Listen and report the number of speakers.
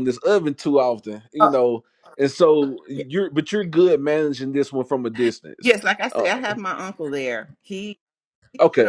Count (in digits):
2